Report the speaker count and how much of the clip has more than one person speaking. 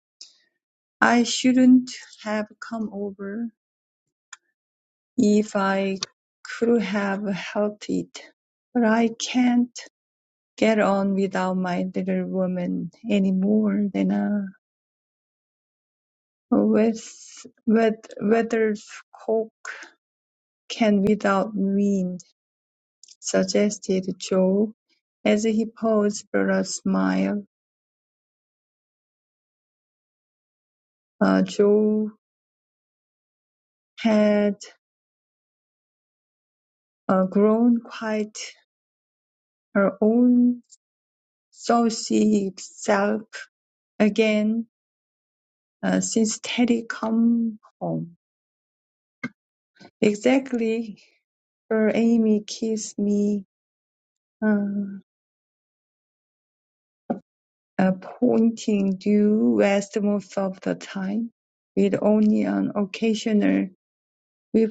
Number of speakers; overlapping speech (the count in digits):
1, no overlap